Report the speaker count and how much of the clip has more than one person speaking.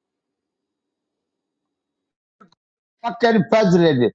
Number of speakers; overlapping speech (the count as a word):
one, no overlap